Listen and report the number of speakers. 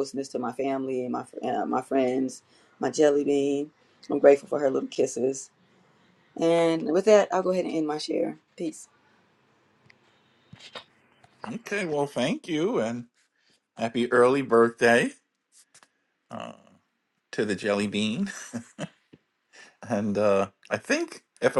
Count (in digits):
2